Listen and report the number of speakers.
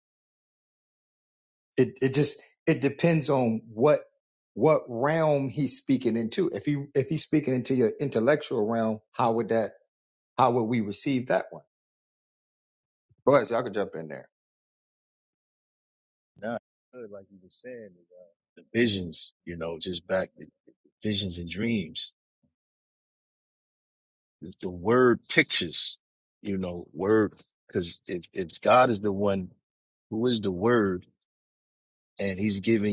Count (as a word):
two